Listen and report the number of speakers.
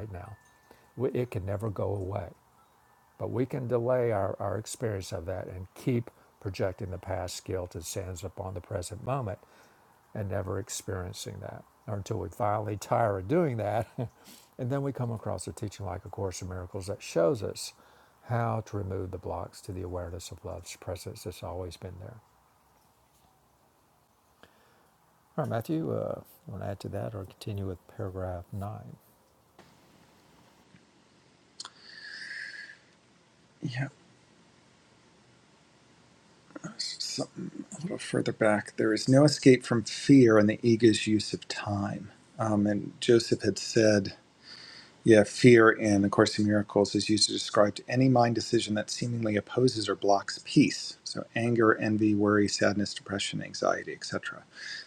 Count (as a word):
two